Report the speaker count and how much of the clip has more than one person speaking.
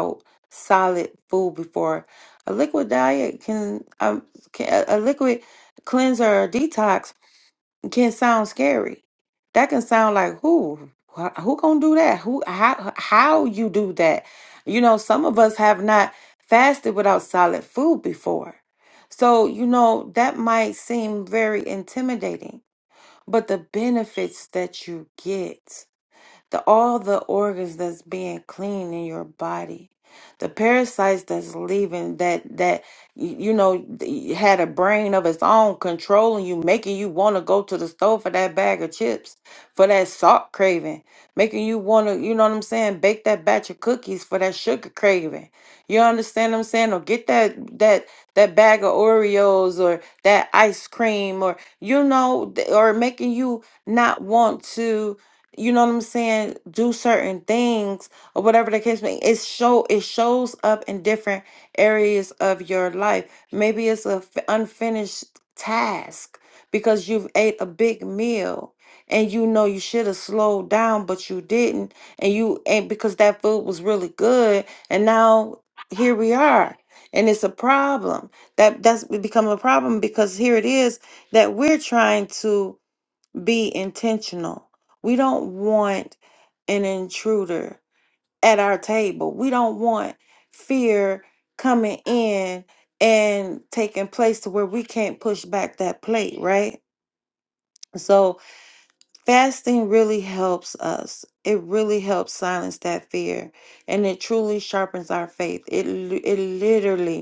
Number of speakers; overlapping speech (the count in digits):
1, no overlap